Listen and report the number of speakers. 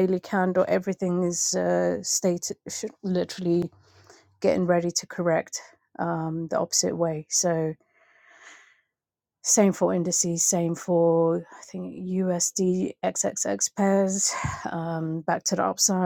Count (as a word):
one